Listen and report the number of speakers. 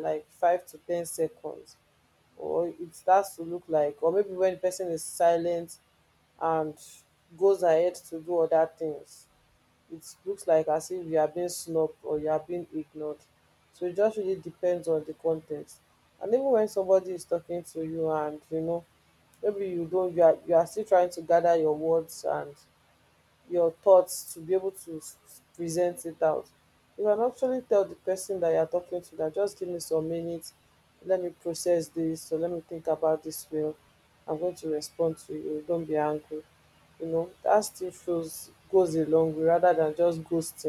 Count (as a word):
one